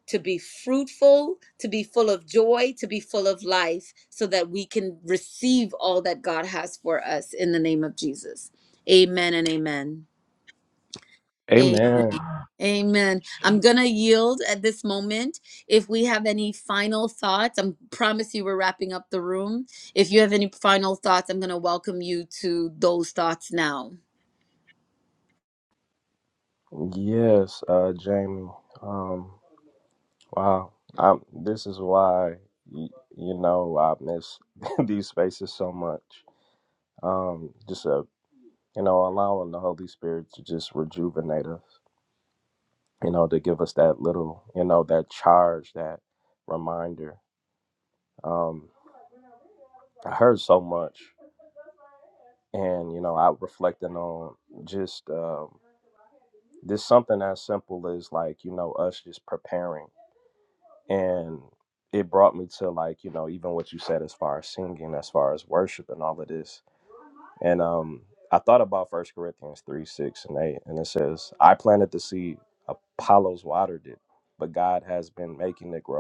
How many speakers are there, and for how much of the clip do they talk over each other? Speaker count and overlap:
2, under 1%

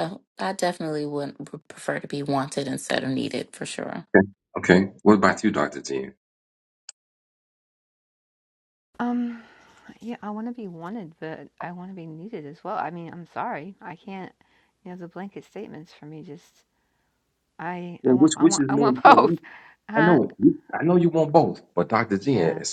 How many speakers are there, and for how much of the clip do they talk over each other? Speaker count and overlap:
3, about 8%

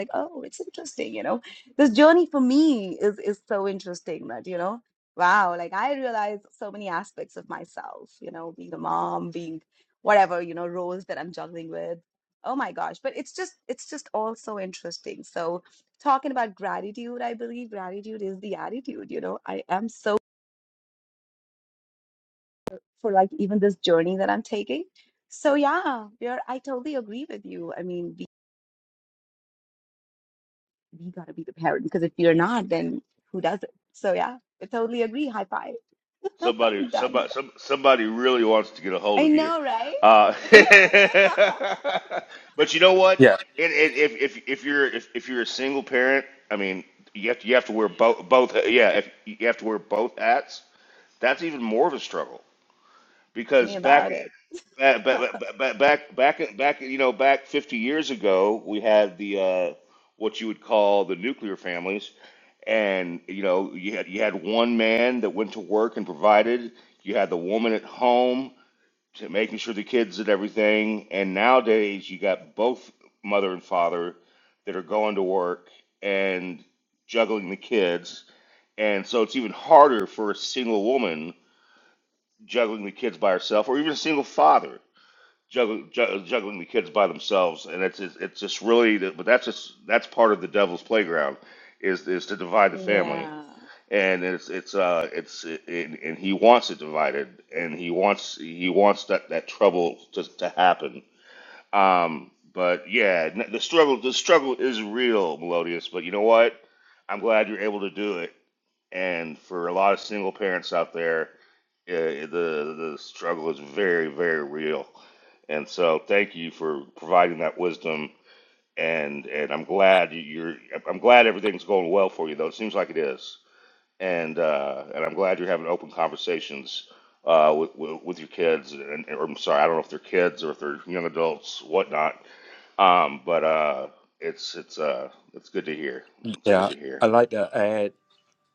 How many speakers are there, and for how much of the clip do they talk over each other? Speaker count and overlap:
3, about 2%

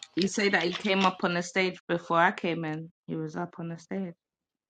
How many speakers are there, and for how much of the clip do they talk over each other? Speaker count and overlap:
1, no overlap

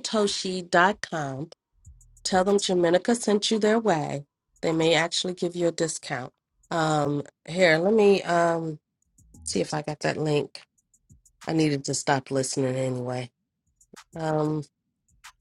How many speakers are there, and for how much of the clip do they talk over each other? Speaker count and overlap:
1, no overlap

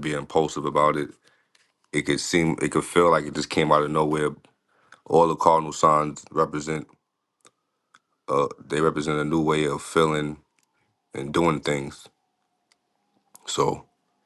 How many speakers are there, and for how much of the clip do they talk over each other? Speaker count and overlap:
1, no overlap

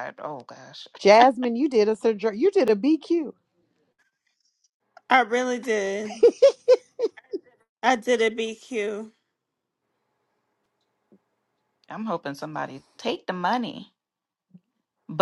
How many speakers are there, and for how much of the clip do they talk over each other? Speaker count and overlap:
3, no overlap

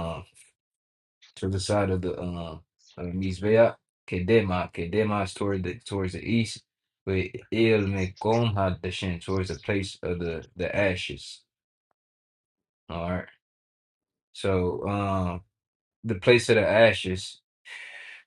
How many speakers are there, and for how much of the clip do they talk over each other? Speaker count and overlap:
1, no overlap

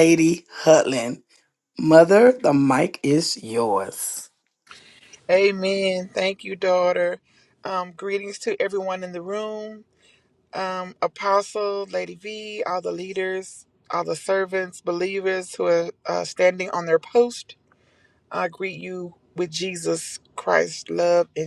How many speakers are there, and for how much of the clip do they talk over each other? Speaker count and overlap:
2, no overlap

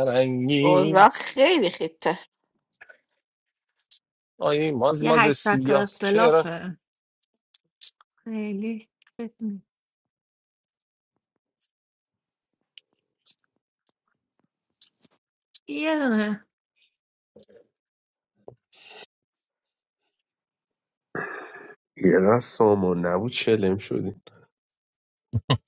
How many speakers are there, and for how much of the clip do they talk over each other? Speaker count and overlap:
4, about 6%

